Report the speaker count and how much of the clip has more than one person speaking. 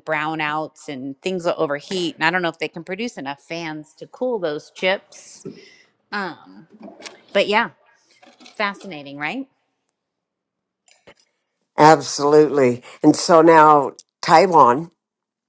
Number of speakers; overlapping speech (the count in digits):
2, no overlap